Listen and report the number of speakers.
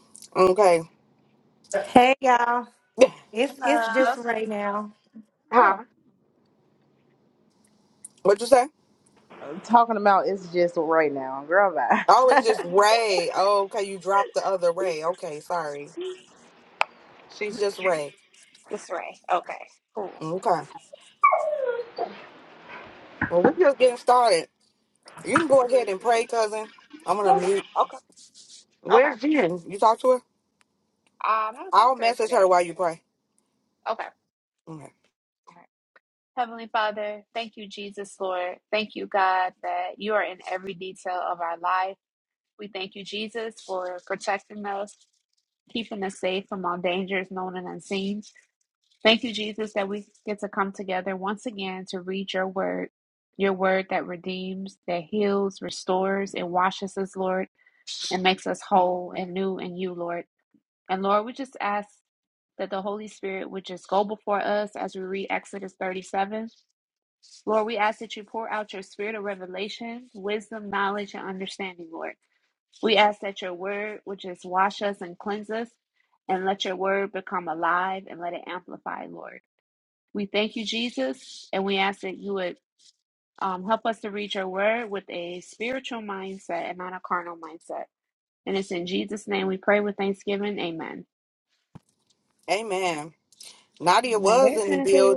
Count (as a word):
four